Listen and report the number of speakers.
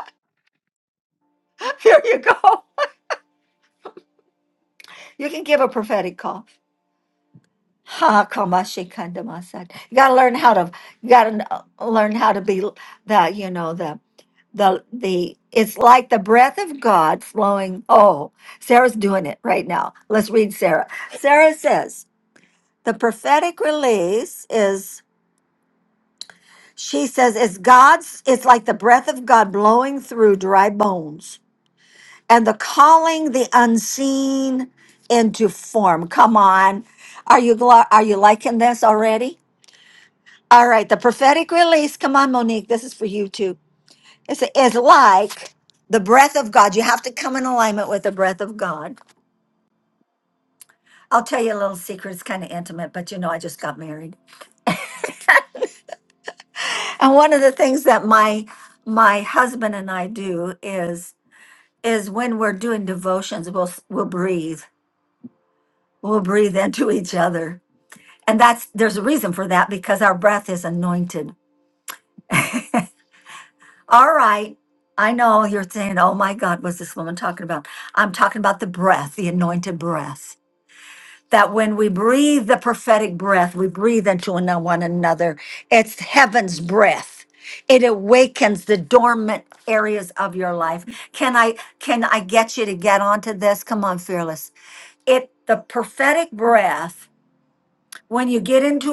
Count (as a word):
one